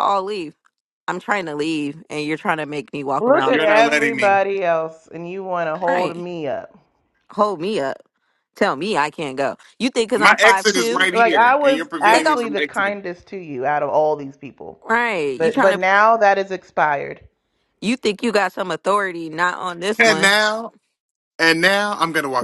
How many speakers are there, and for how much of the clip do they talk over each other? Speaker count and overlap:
3, about 22%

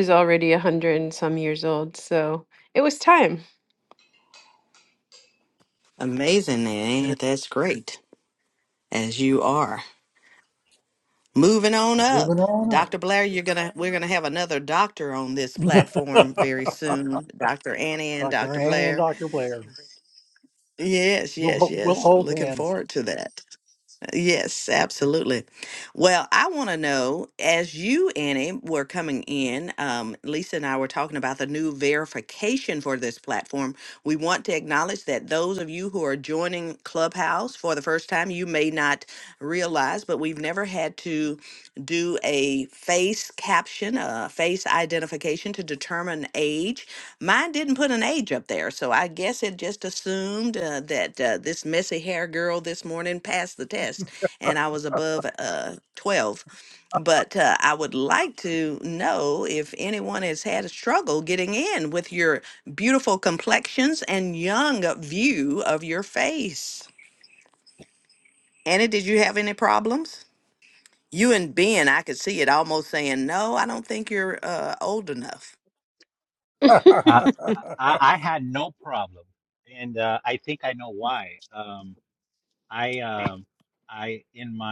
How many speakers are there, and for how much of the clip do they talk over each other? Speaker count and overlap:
4, about 3%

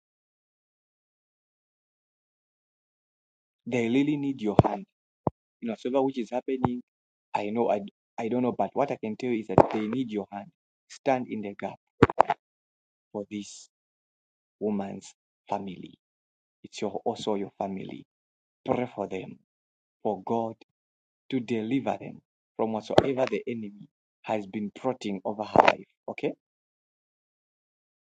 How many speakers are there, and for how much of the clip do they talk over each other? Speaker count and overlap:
1, no overlap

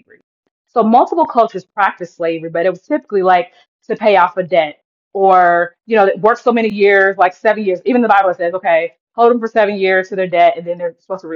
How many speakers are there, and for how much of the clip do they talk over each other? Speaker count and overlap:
1, no overlap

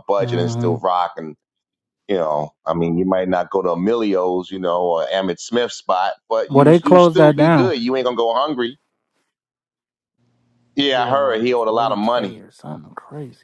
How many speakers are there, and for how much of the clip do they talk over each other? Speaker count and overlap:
2, about 23%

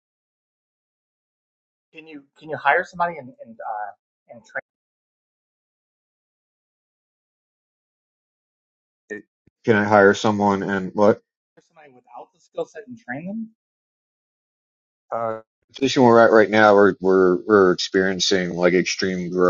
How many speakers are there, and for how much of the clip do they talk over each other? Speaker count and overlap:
2, no overlap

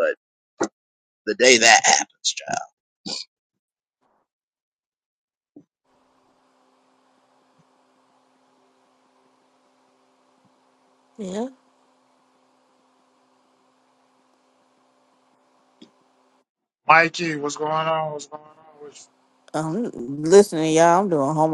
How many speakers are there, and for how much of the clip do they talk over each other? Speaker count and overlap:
3, no overlap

